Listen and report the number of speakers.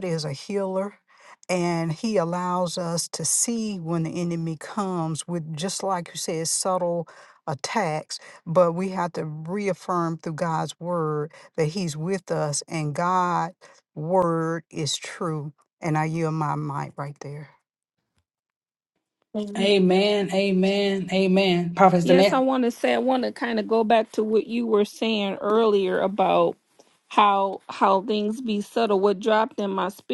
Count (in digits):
3